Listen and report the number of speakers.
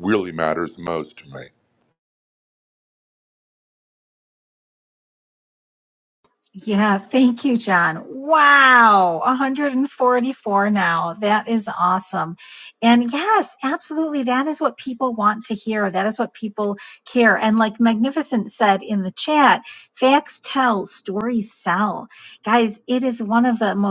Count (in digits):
2